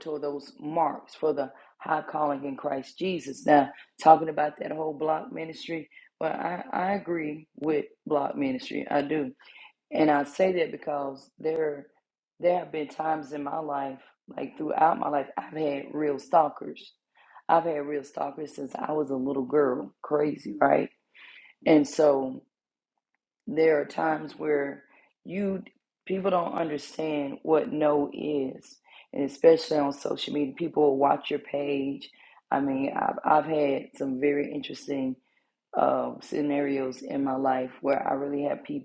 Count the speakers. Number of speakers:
one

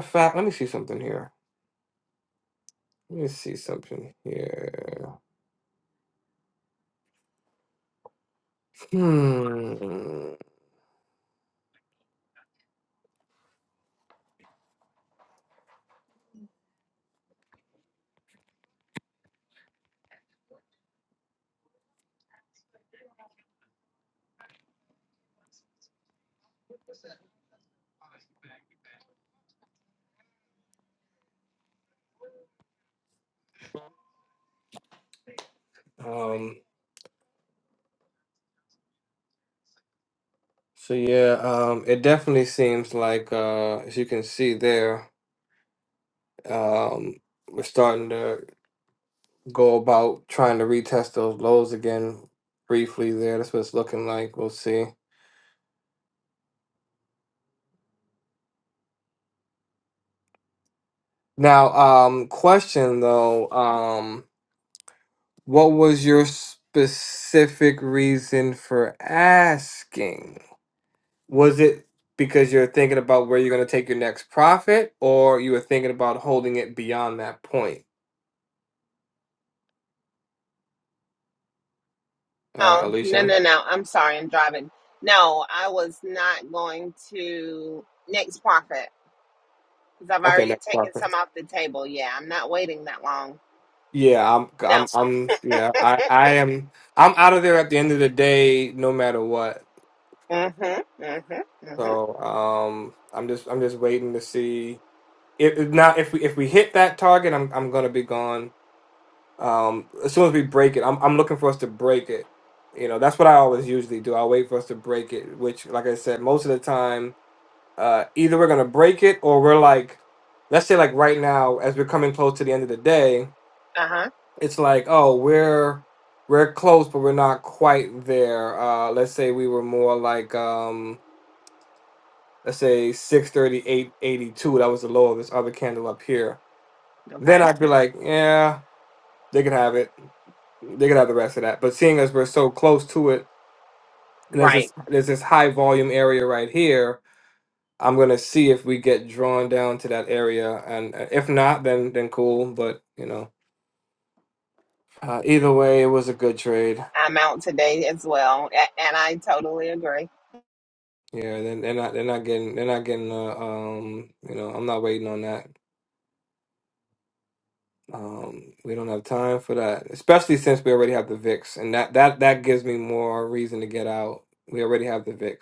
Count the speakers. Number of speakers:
two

